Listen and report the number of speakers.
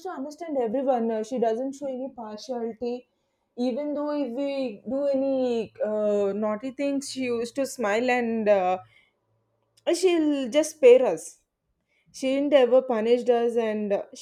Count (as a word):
one